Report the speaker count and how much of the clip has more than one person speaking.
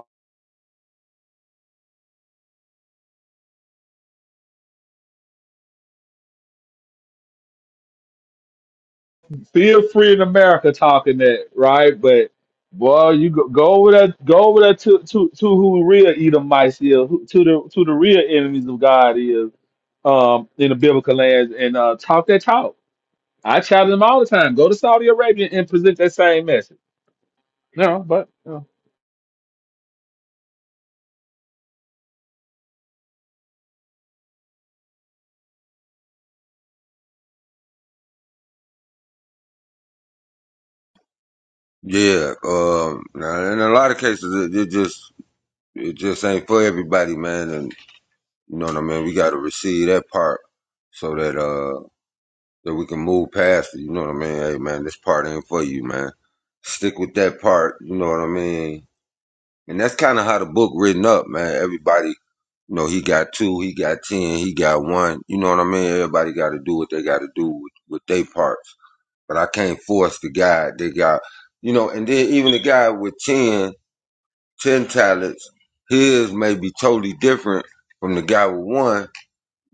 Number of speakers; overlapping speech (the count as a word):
two, no overlap